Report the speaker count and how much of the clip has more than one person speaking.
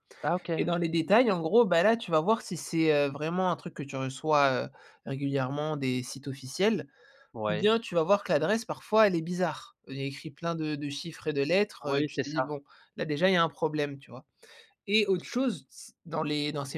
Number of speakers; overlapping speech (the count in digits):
2, about 6%